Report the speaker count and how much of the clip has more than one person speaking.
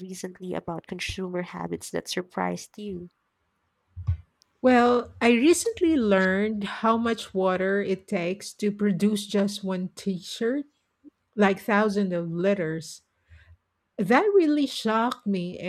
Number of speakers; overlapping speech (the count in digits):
2, no overlap